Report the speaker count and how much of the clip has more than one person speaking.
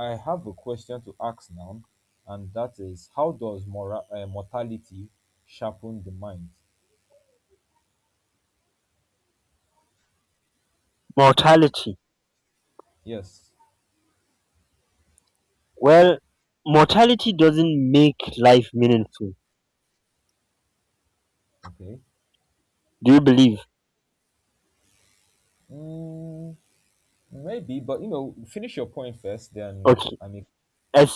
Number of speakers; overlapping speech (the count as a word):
two, about 1%